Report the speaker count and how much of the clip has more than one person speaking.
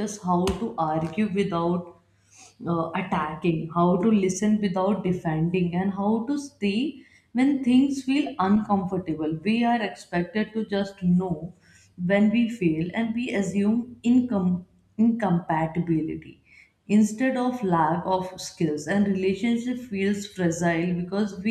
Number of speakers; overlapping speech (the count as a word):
one, no overlap